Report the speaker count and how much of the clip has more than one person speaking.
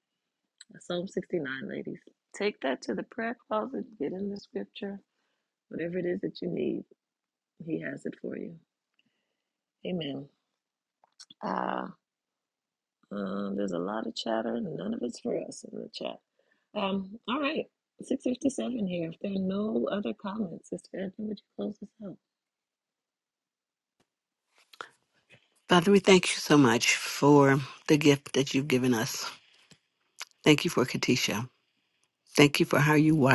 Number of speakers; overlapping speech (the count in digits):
2, no overlap